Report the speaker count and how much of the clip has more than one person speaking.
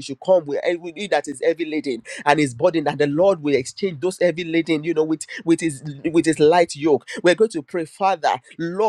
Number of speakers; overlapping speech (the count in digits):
1, no overlap